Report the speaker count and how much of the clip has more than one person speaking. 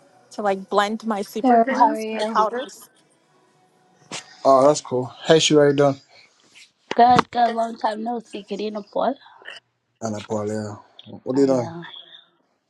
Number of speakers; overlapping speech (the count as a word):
three, about 10%